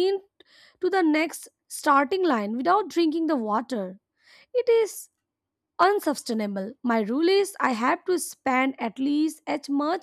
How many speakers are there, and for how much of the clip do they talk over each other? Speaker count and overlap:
1, no overlap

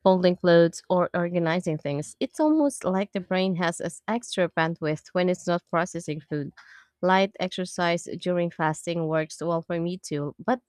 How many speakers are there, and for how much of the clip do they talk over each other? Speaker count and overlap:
1, no overlap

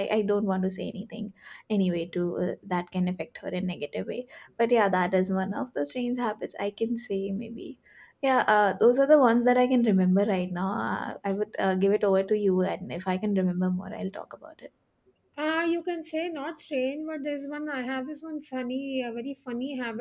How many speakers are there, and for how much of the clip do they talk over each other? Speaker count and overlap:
2, no overlap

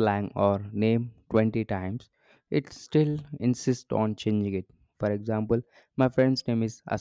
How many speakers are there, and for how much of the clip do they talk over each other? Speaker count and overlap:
1, no overlap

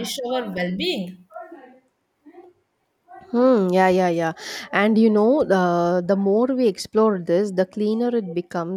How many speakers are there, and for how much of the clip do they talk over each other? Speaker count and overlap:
2, no overlap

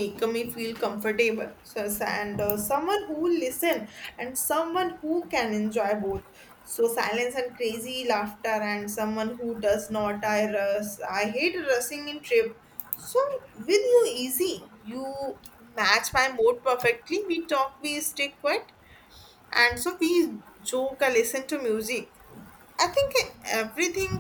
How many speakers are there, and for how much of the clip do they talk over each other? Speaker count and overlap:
1, no overlap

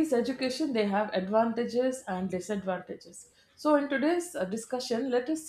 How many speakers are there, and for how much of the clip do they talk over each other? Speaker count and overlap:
1, no overlap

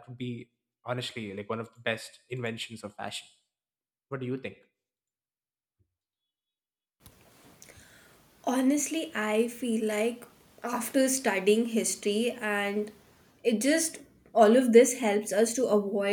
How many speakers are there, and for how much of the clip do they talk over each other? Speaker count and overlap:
2, no overlap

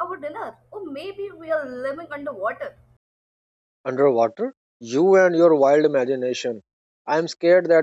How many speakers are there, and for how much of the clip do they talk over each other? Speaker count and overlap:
2, no overlap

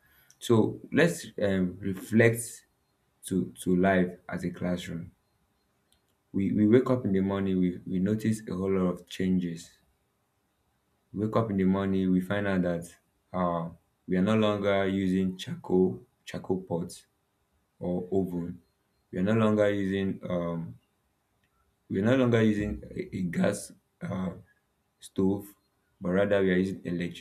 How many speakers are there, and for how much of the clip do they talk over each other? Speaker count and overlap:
1, no overlap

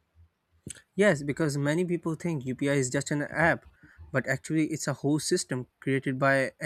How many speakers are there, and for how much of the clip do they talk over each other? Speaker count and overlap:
1, no overlap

